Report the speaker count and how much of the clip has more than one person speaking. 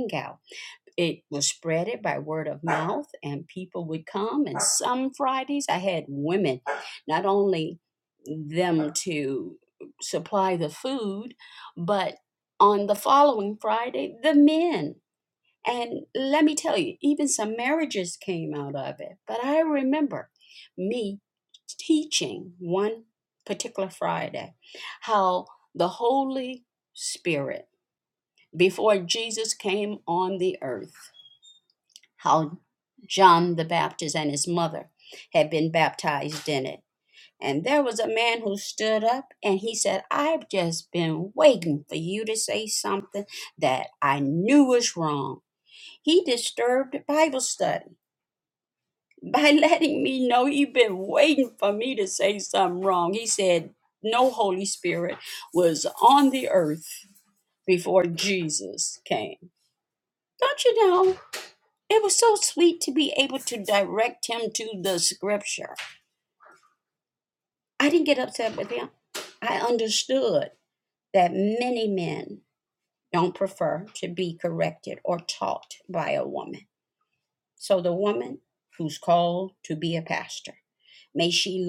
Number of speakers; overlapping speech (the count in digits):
1, no overlap